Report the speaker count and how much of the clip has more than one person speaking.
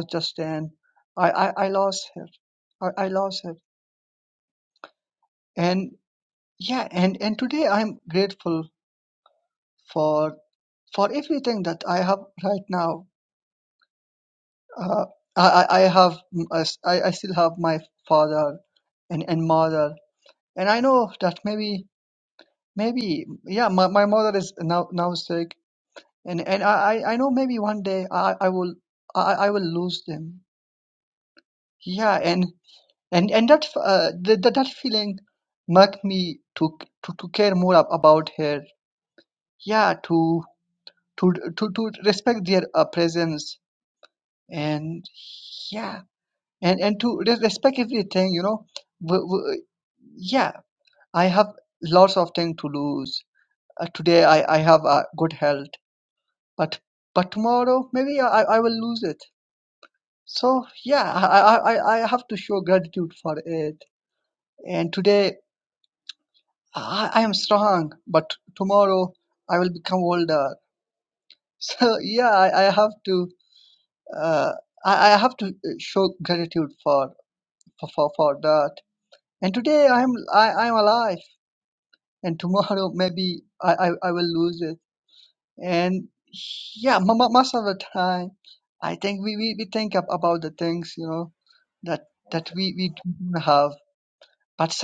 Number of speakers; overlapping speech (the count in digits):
1, no overlap